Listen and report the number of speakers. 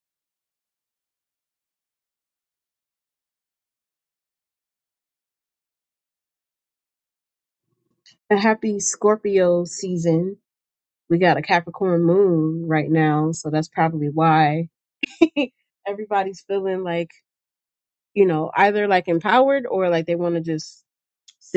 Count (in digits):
1